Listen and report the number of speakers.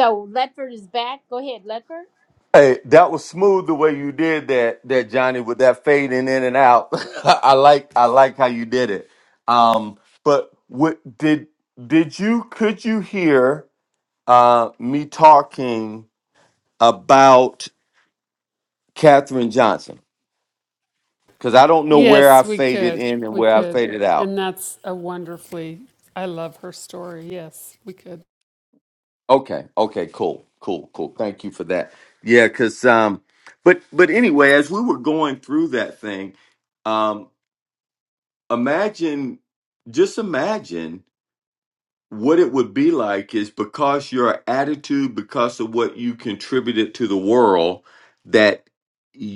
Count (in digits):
3